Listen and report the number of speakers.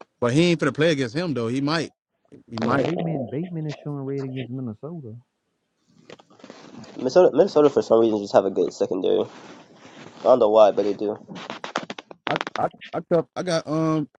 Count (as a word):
three